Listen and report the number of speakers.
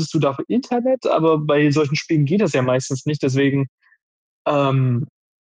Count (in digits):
1